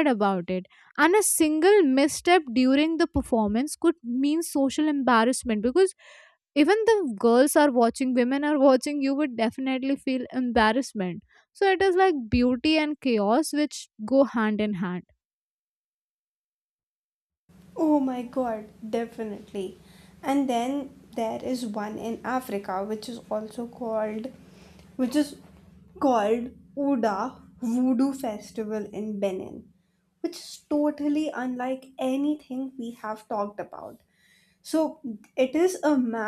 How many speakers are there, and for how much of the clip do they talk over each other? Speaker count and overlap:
2, no overlap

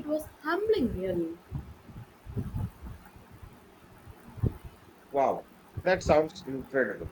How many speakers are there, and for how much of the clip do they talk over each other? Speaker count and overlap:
2, no overlap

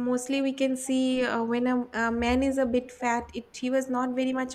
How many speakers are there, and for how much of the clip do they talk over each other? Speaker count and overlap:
1, no overlap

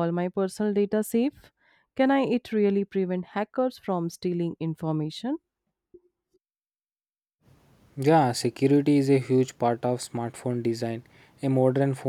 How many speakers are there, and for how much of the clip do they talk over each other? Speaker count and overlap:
2, no overlap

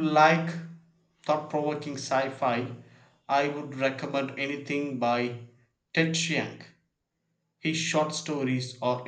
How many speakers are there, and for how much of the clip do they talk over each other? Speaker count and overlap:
1, no overlap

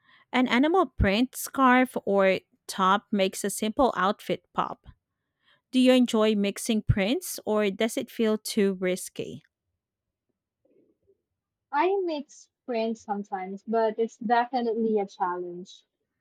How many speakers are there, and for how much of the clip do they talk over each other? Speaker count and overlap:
2, no overlap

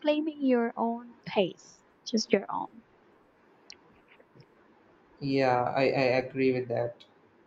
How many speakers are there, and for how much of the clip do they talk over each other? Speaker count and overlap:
2, no overlap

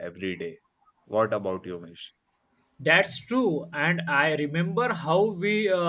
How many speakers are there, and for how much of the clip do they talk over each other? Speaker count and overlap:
2, no overlap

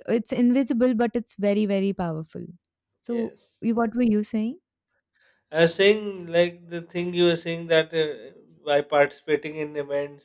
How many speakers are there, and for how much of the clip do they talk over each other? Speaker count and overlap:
2, about 2%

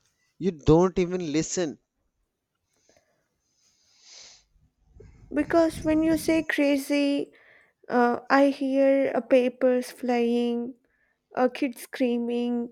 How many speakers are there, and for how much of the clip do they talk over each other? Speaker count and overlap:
2, no overlap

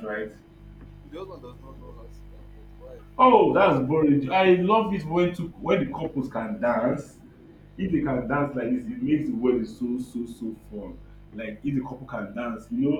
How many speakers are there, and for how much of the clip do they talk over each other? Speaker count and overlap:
2, about 7%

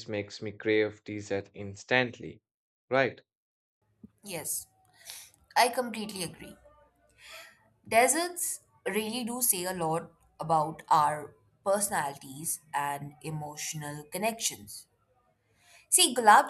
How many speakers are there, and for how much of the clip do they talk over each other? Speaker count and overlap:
2, no overlap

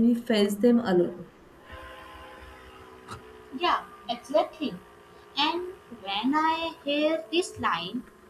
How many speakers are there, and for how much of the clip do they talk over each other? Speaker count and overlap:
2, no overlap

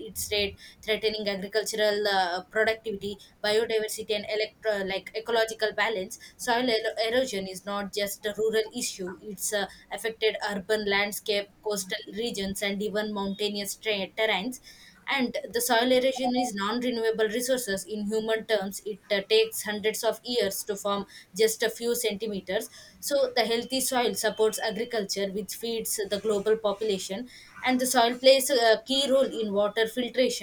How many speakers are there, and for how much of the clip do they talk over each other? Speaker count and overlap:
1, no overlap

